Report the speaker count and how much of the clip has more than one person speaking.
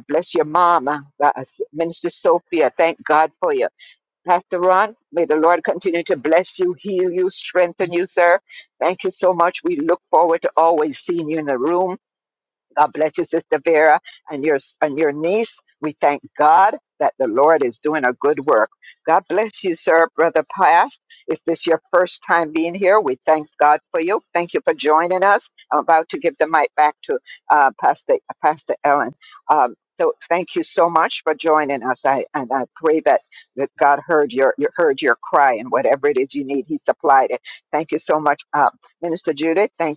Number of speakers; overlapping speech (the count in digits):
1, no overlap